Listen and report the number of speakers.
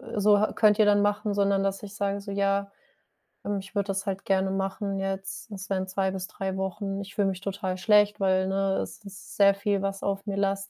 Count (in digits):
1